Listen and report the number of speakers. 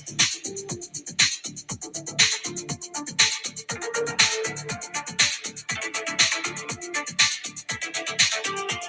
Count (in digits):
0